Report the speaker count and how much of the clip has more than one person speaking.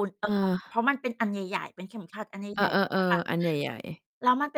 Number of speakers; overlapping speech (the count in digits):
2, about 16%